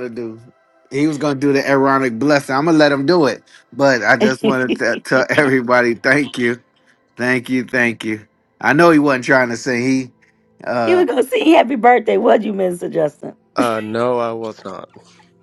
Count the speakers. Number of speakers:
three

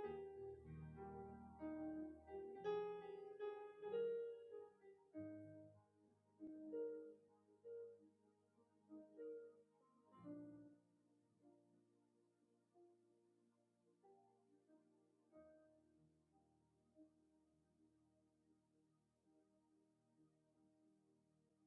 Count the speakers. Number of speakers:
zero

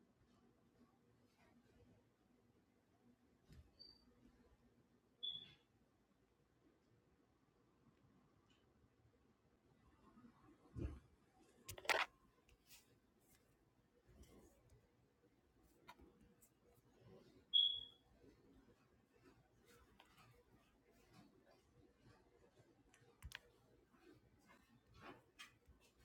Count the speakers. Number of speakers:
zero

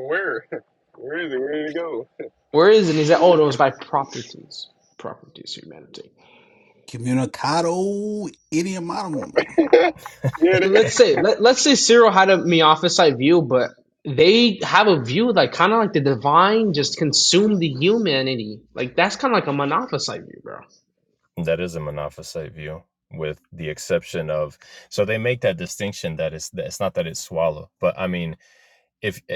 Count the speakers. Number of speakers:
four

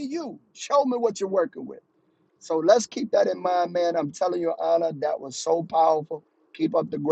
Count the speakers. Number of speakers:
one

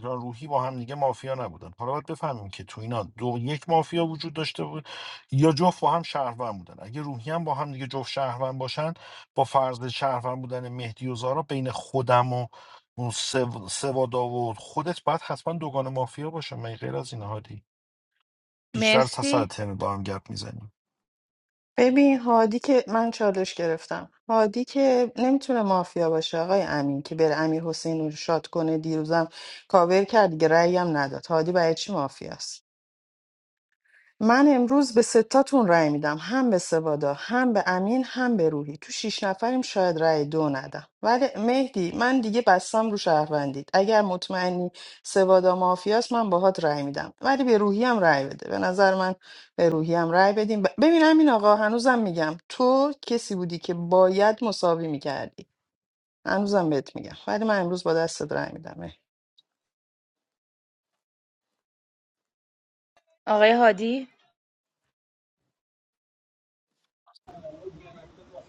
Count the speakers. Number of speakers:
three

